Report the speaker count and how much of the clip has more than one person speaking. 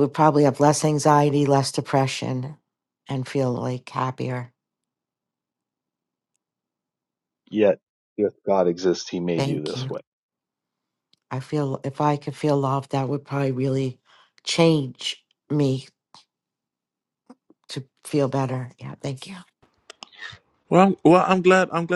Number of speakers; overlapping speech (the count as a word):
three, about 2%